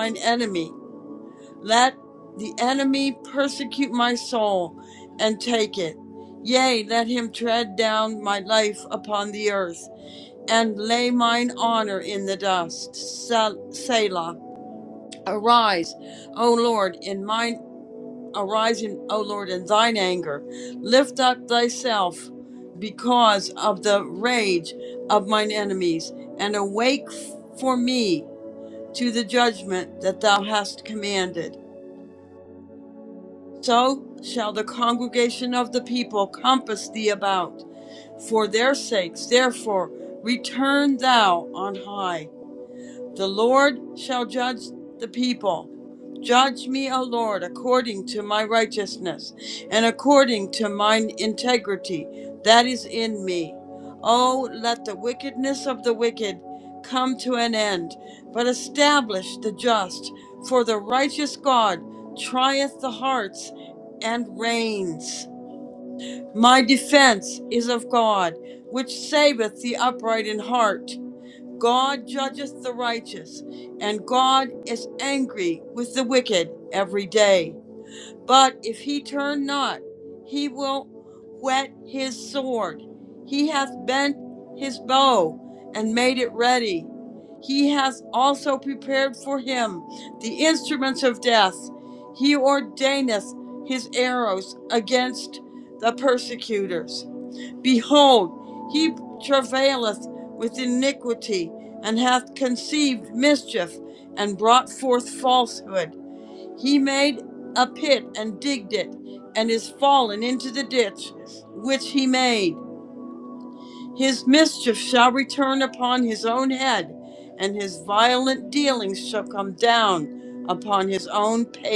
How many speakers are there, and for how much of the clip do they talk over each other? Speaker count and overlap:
one, no overlap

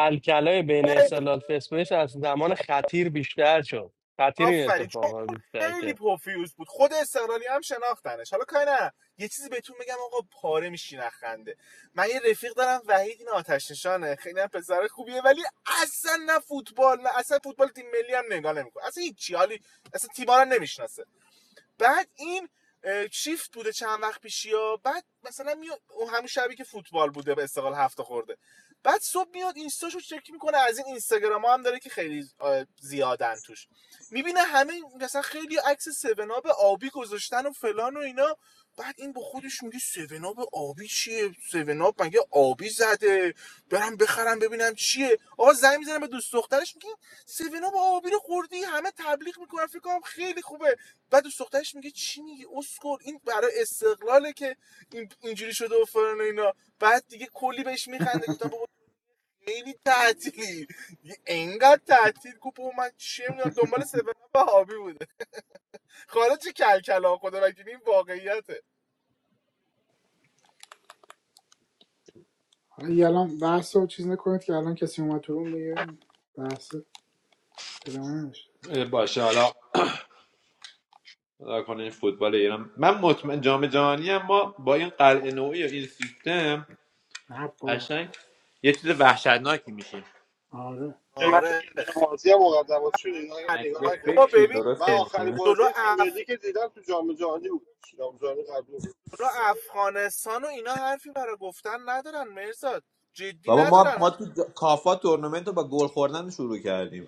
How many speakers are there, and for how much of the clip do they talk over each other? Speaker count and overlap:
five, about 5%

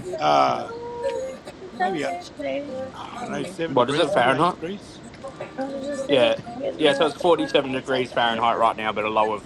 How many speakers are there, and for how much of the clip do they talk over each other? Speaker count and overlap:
three, about 44%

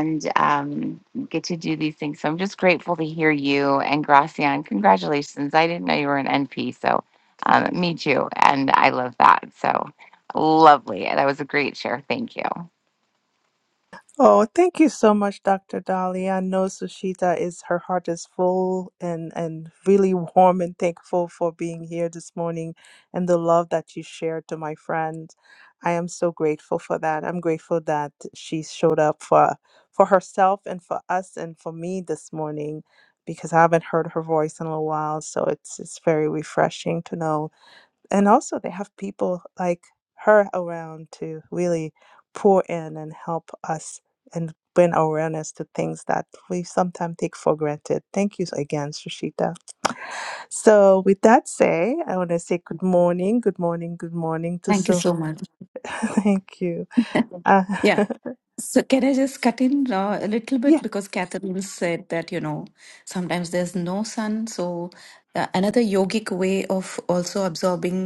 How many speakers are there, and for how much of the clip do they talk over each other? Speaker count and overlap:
three, about 1%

